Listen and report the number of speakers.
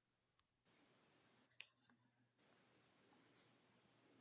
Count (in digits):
0